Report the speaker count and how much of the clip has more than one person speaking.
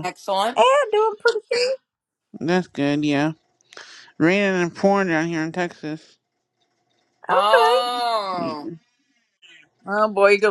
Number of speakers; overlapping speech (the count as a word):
three, about 6%